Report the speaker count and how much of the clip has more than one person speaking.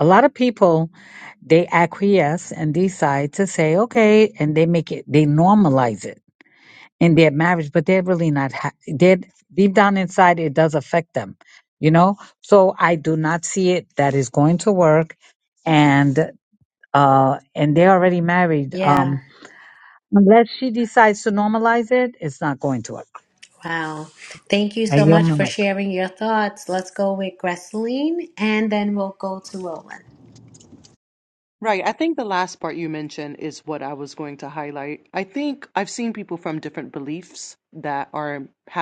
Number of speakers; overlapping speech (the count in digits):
3, about 3%